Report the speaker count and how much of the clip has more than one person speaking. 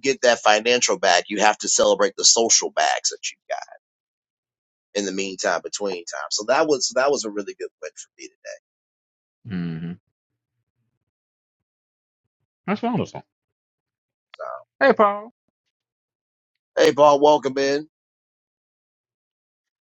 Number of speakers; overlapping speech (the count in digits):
2, no overlap